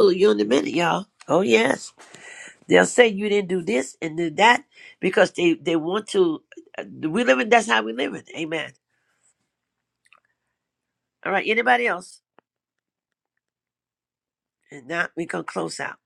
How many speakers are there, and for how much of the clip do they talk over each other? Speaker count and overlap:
1, no overlap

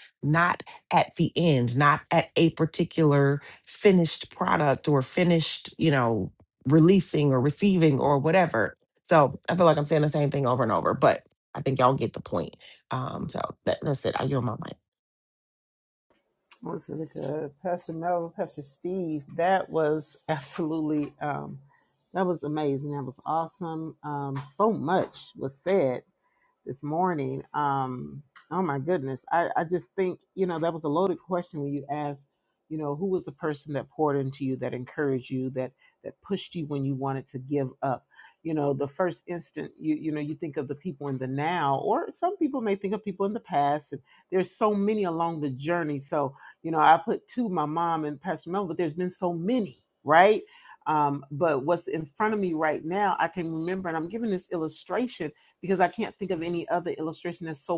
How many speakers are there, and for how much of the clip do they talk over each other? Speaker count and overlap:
2, no overlap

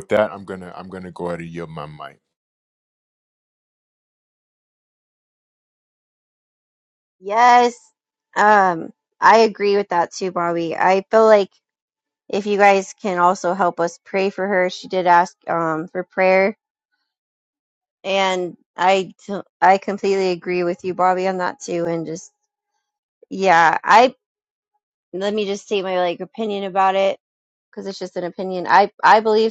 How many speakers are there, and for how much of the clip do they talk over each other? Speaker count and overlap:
2, no overlap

